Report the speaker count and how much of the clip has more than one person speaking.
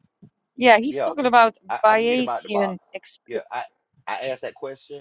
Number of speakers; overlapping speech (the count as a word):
two, about 24%